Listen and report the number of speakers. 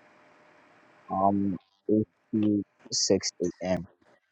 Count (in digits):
1